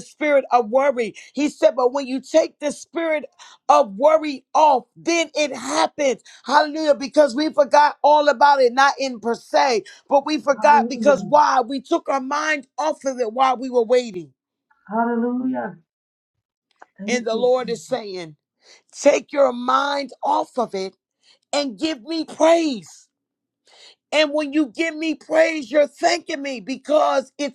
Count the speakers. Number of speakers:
two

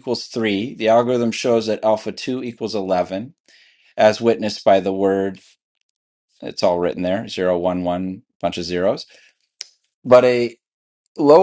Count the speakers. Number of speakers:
one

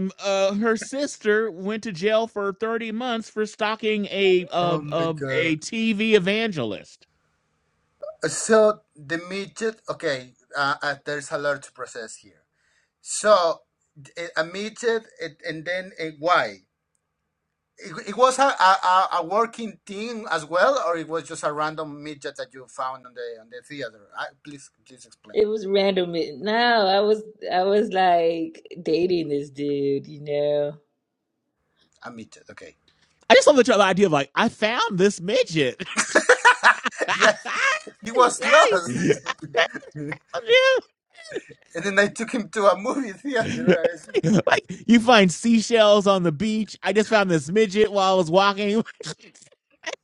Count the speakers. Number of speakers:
three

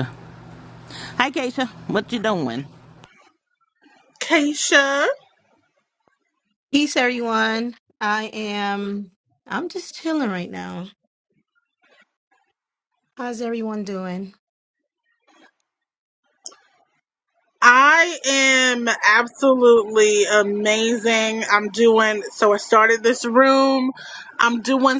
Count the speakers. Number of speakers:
three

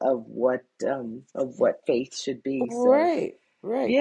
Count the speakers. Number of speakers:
two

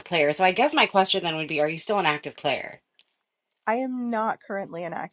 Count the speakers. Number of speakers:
two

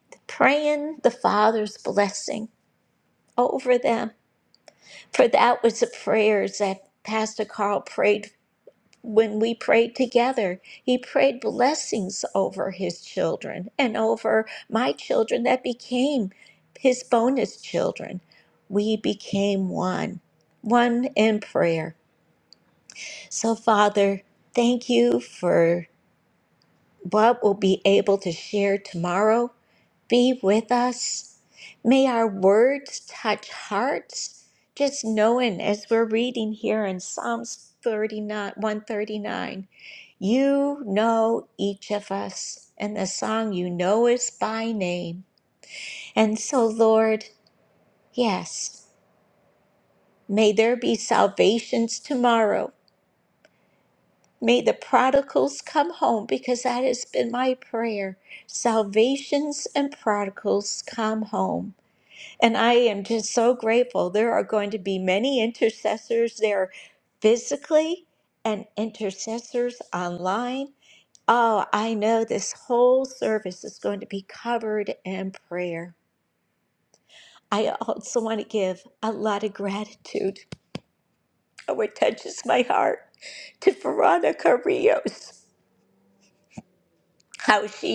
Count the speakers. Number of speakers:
one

